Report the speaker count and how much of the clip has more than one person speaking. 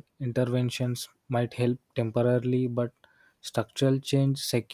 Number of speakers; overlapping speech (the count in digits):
1, no overlap